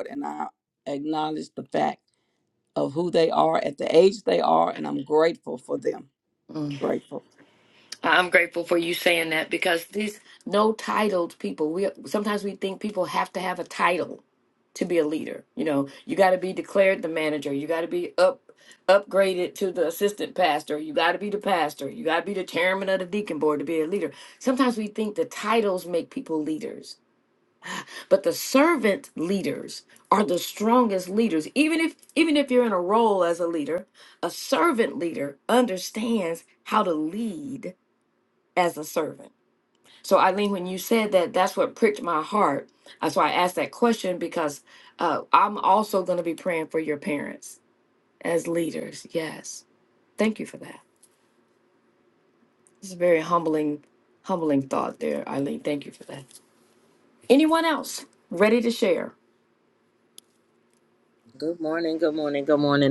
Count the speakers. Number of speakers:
three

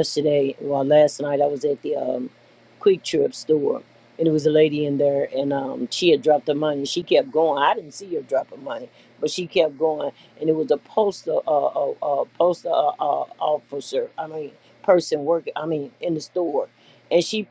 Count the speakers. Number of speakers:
one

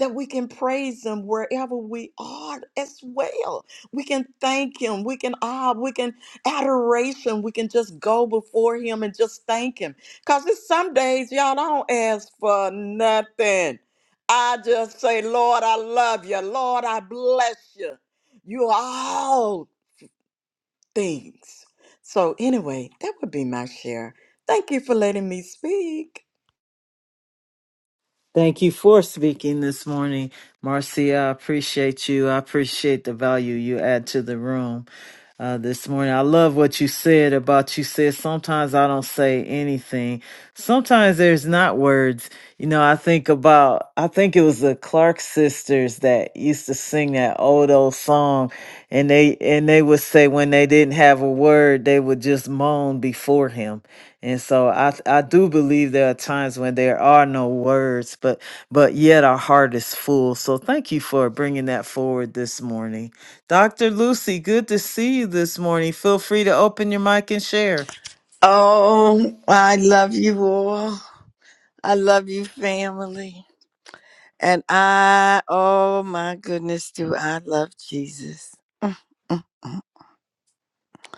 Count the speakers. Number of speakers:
three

